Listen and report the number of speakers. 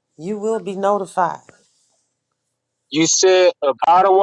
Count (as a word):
two